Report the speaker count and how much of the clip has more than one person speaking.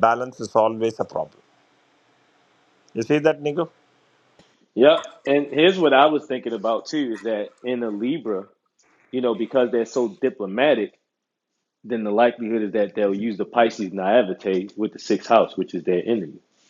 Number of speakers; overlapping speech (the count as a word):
two, no overlap